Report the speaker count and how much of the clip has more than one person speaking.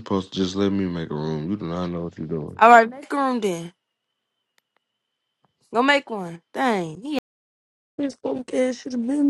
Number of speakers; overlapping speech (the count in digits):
3, no overlap